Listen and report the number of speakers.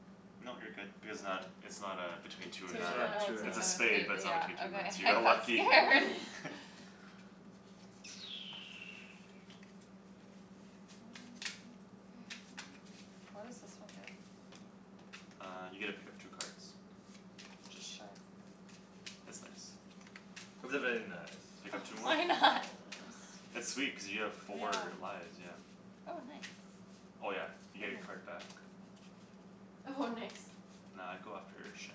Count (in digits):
4